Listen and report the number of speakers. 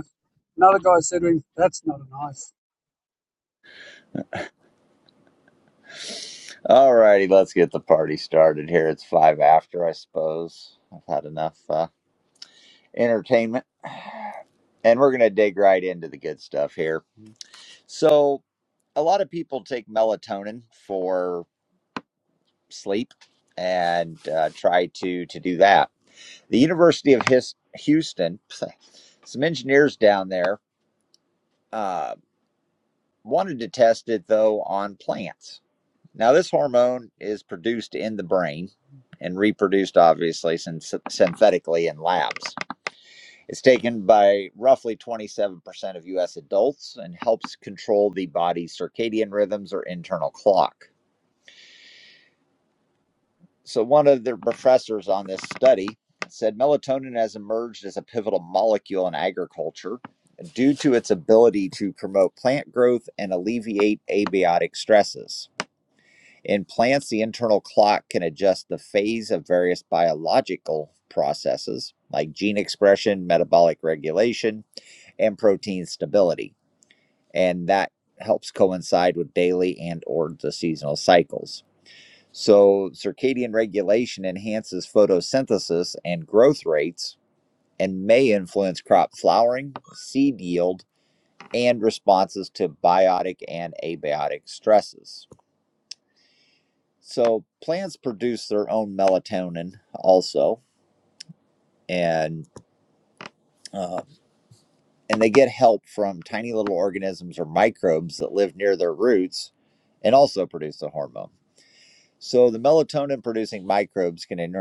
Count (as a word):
two